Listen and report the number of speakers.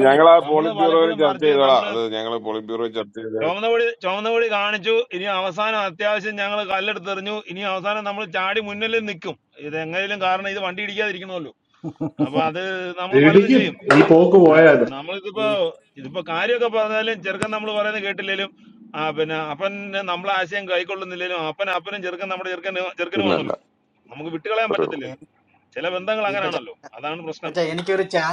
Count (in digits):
4